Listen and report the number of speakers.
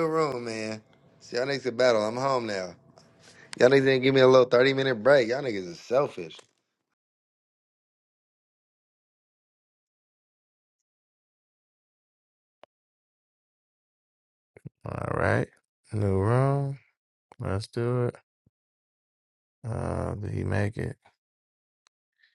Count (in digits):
2